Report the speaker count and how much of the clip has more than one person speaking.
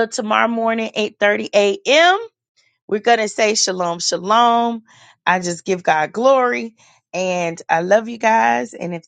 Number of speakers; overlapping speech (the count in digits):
1, no overlap